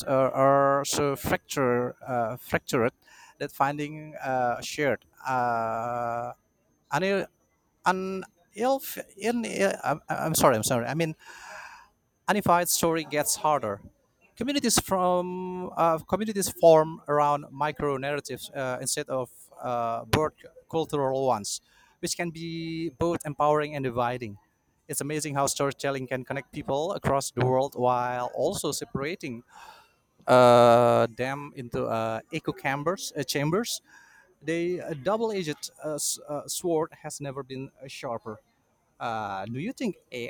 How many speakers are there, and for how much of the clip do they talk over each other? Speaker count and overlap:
1, no overlap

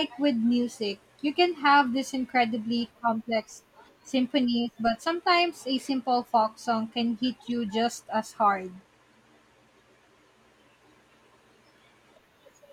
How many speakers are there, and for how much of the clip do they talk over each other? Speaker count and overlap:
1, no overlap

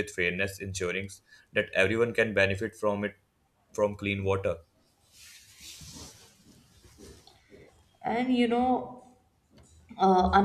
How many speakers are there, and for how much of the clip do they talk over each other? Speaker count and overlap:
2, no overlap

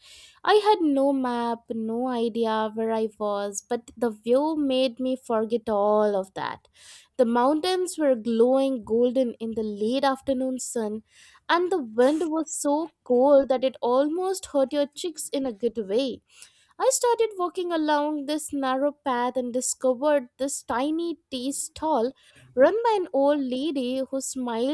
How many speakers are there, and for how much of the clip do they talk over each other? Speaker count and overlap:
1, no overlap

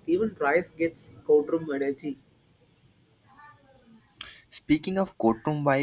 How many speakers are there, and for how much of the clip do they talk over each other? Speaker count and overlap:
2, no overlap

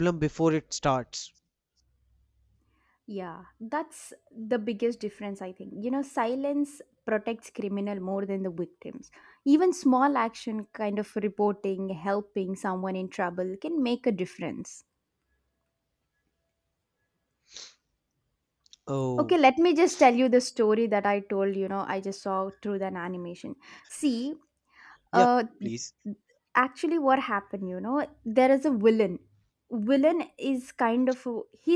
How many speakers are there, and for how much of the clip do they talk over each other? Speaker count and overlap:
2, about 1%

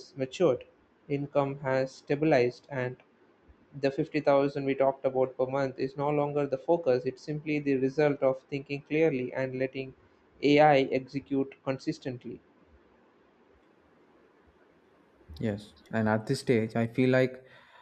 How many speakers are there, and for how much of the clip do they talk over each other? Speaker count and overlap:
2, no overlap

